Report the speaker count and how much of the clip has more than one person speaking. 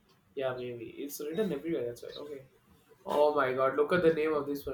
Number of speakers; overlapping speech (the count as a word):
one, no overlap